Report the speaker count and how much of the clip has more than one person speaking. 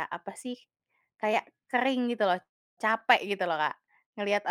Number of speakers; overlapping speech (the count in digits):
1, no overlap